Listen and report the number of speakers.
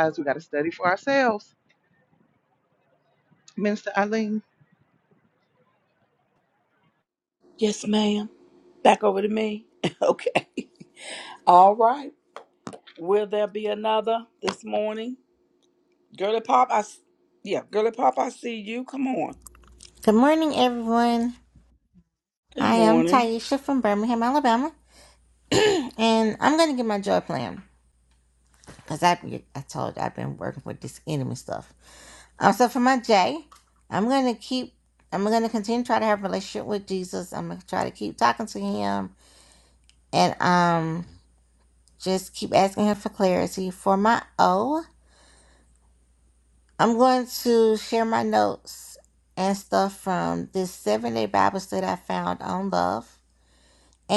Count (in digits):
3